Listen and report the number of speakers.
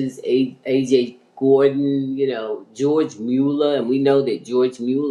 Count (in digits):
1